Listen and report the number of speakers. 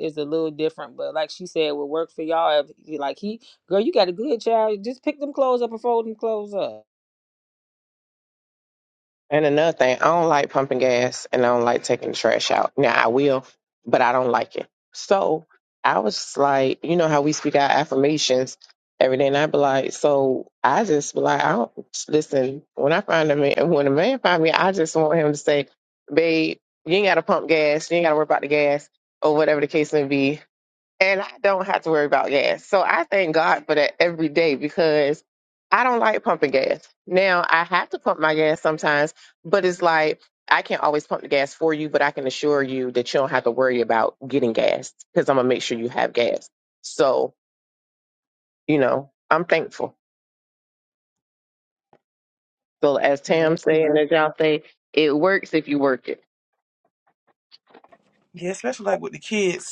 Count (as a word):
three